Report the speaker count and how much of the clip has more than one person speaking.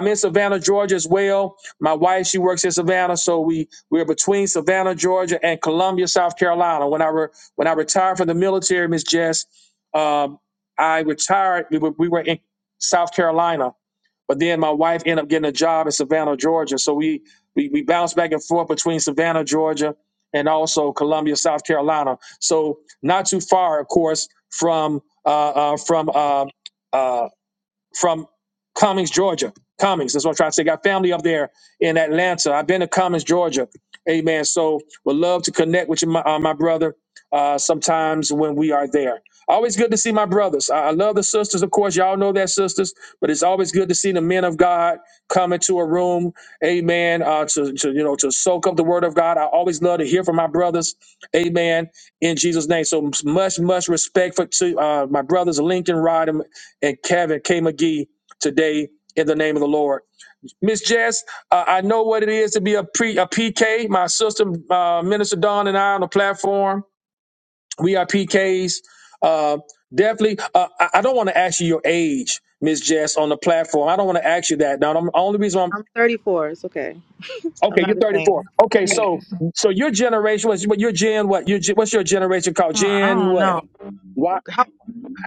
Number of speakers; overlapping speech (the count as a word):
two, about 2%